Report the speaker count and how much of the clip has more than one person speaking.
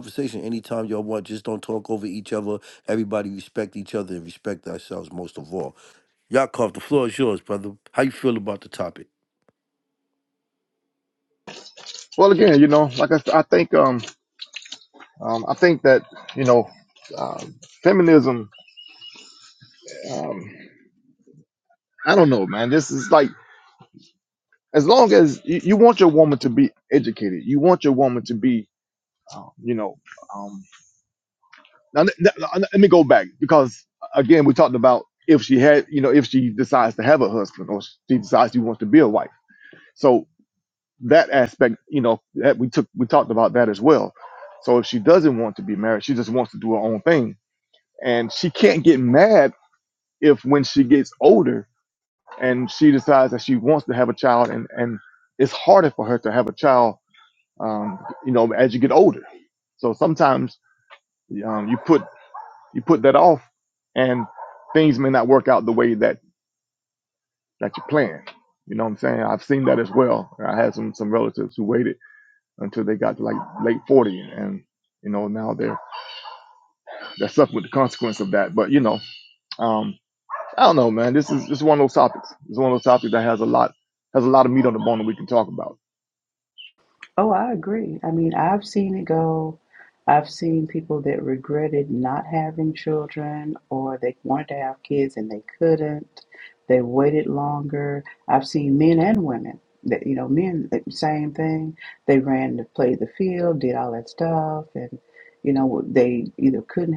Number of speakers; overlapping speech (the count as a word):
three, no overlap